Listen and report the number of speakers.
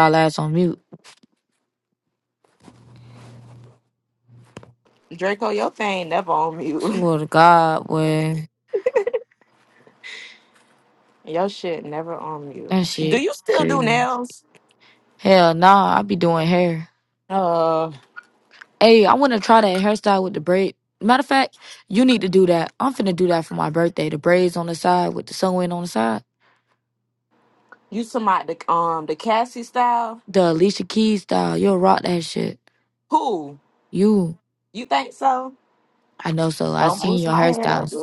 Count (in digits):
2